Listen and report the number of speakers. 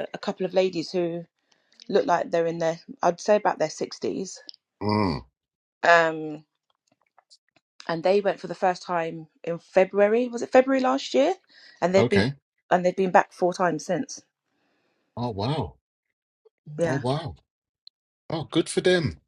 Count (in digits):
2